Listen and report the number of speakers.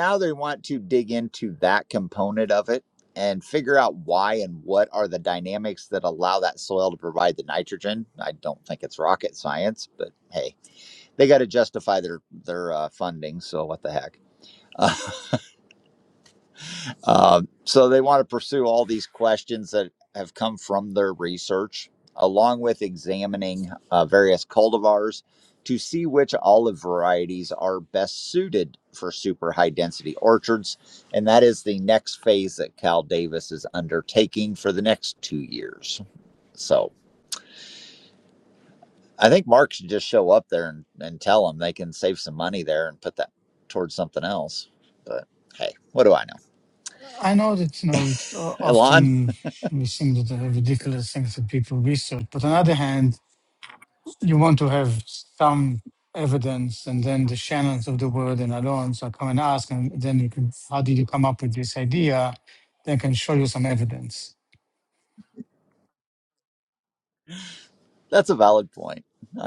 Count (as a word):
two